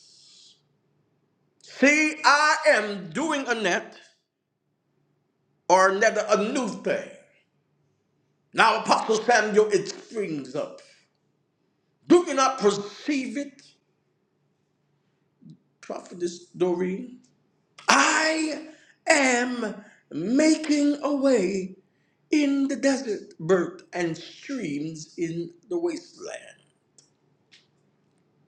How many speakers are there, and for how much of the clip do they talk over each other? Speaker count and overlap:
one, no overlap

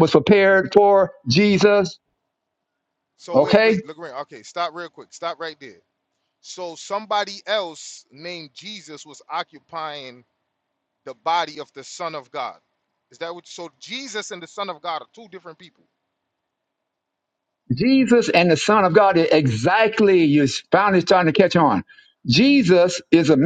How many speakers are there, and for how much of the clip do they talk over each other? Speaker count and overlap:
two, about 2%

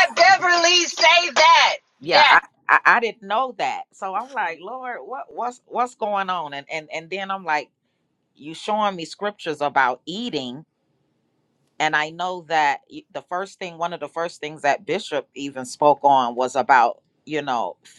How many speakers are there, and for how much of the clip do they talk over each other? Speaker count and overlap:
two, about 2%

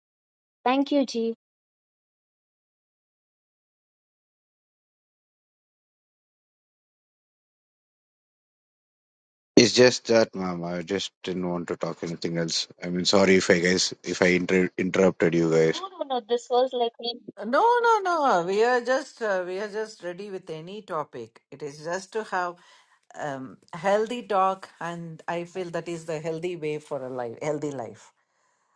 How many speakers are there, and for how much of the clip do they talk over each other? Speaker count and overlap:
three, under 1%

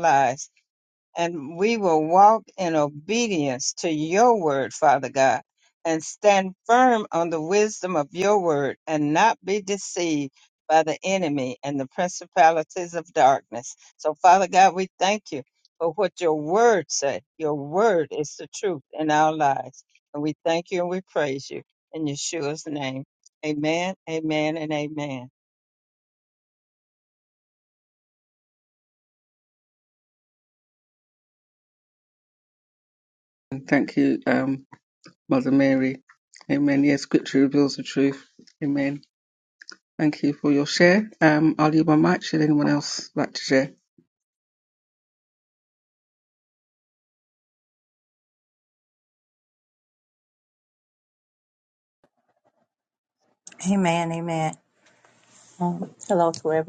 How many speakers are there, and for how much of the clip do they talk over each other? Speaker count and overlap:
three, no overlap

